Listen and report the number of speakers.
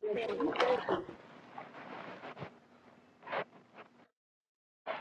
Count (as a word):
zero